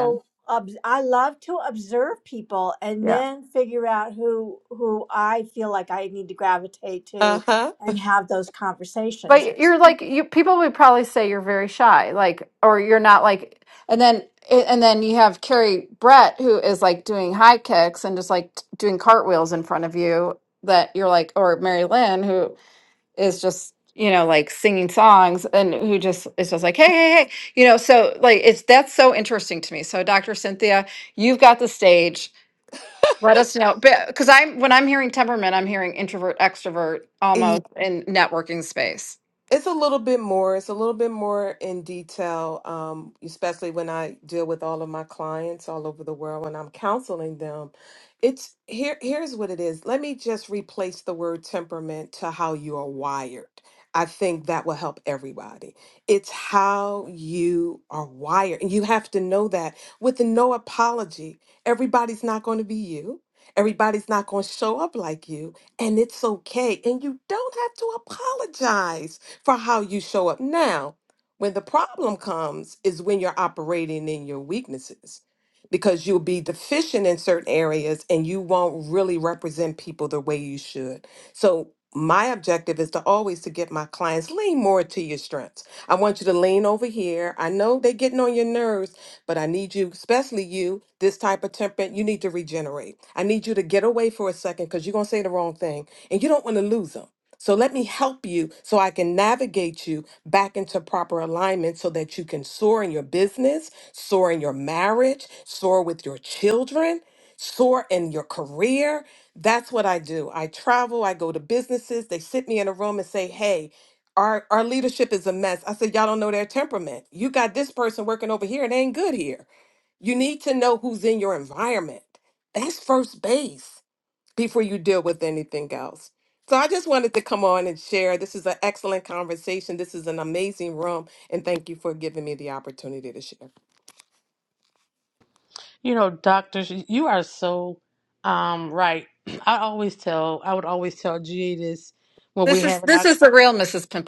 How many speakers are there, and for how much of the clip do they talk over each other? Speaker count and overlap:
4, about 1%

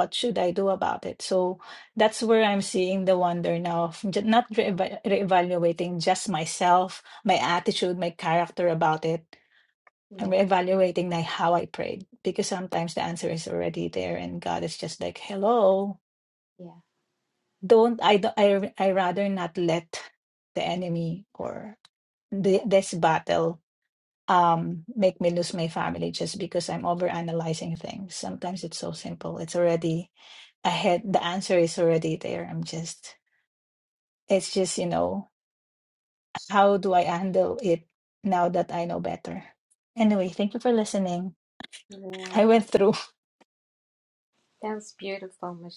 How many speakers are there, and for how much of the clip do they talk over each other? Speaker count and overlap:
2, about 1%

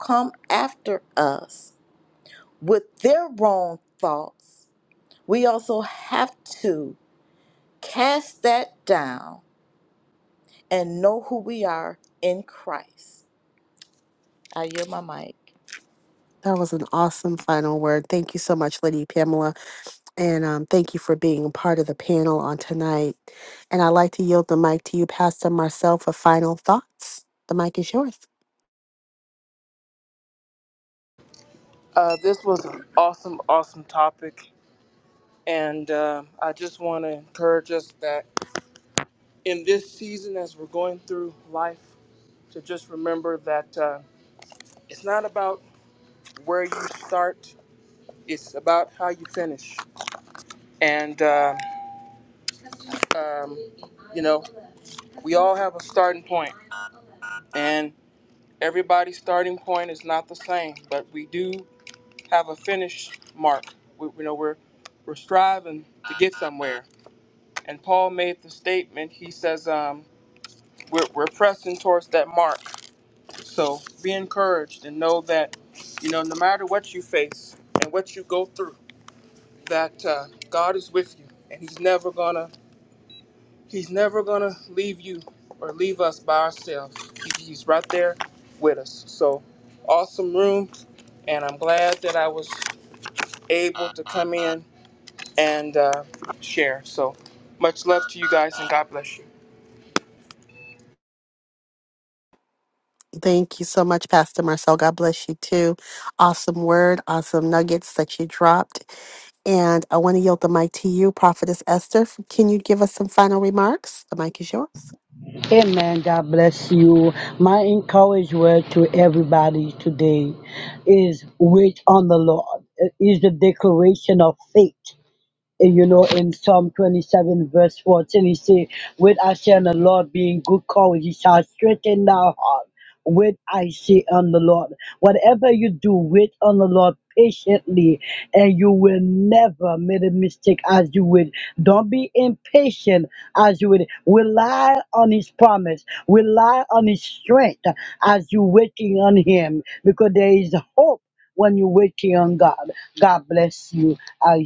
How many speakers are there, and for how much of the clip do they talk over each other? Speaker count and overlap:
4, no overlap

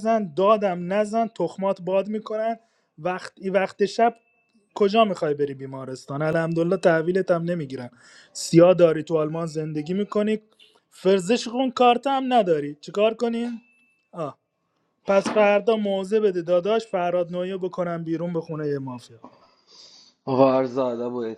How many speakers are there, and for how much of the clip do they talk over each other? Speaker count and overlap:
2, no overlap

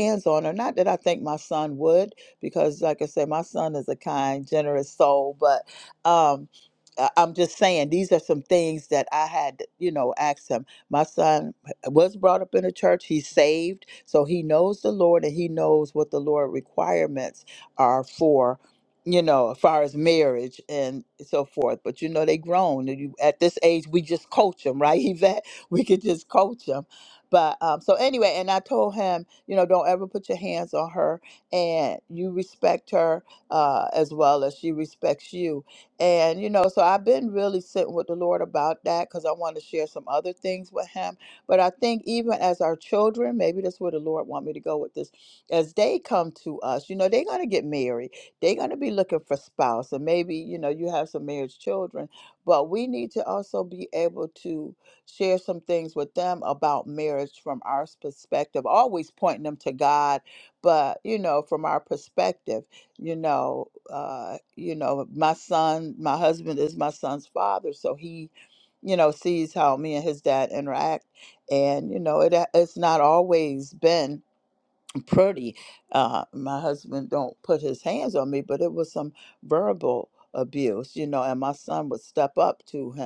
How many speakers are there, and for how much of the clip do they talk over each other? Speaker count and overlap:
1, no overlap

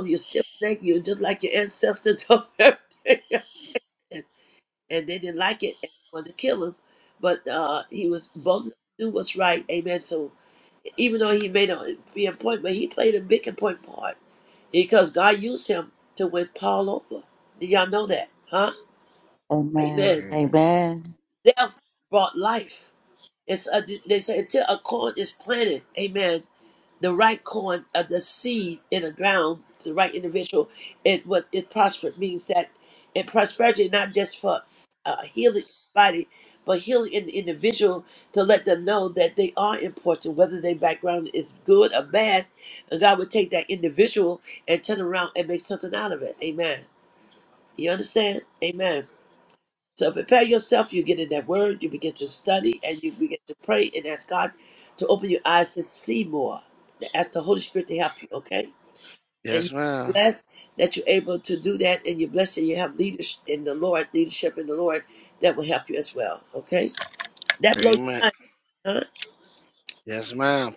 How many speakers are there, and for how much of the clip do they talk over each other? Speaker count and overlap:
3, about 2%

